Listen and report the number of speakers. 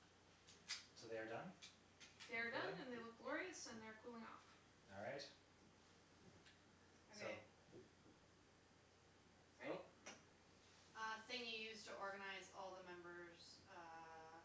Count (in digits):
3